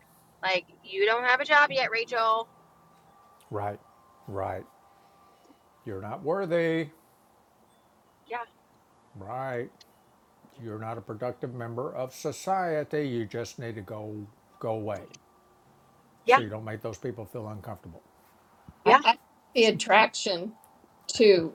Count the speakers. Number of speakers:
three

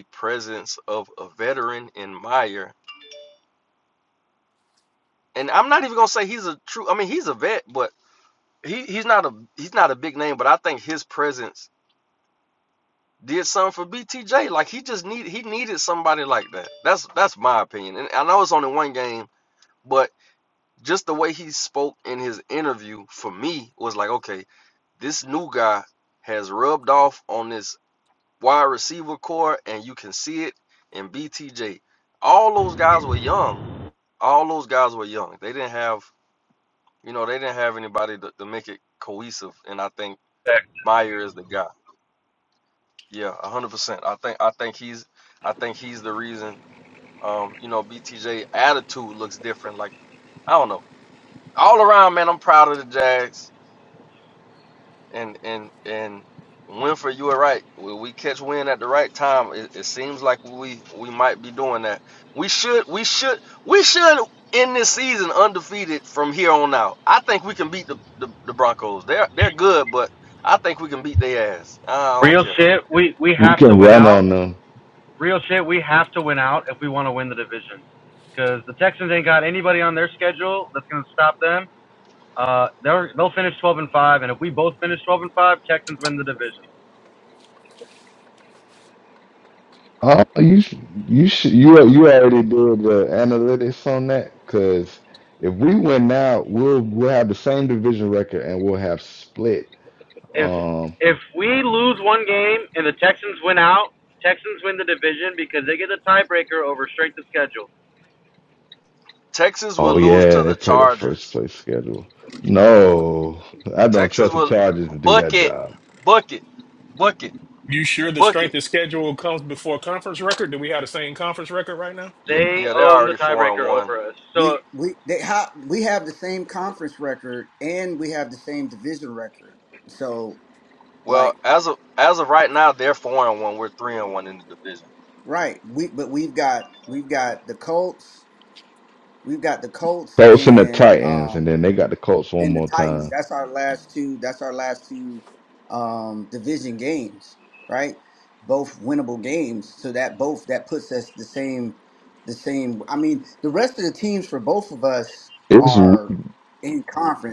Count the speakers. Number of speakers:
five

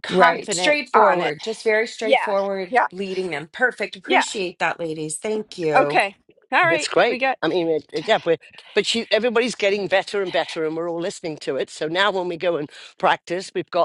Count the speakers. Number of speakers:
three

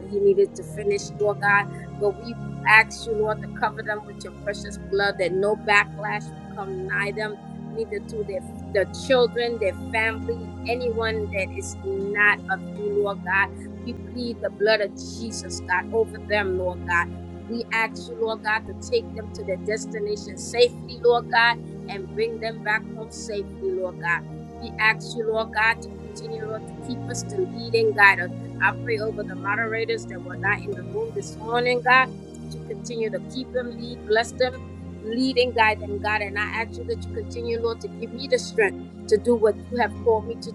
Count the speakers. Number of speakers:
one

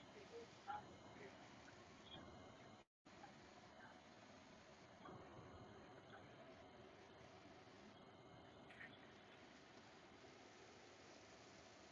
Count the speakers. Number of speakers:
zero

